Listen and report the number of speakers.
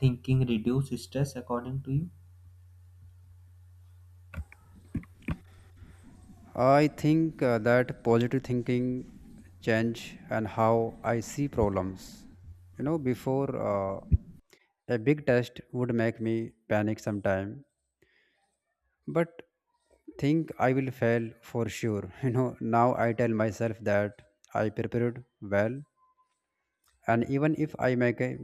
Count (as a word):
two